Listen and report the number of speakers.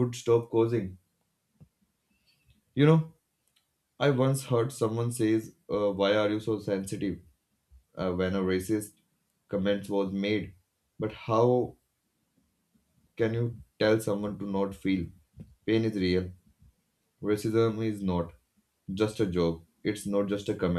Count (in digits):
1